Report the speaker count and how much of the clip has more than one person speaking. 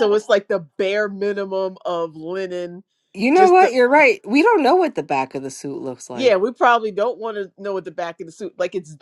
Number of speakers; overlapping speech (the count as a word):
two, about 6%